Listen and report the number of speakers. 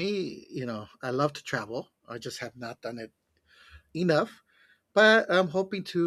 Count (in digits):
1